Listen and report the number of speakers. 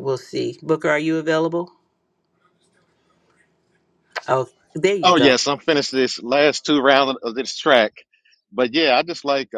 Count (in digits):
2